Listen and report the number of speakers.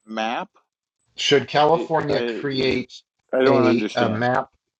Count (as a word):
two